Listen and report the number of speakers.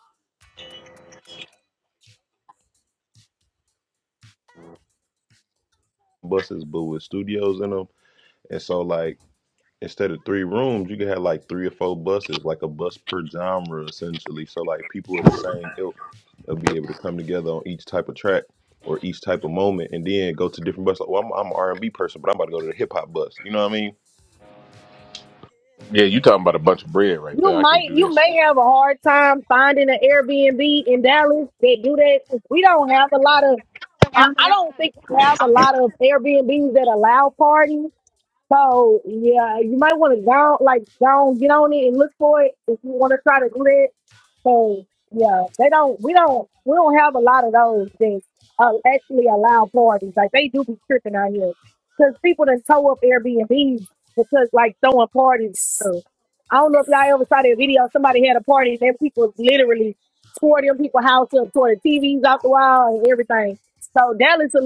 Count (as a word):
three